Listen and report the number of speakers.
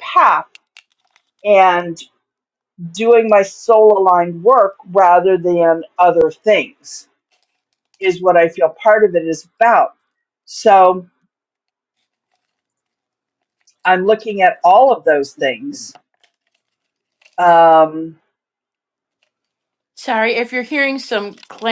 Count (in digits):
2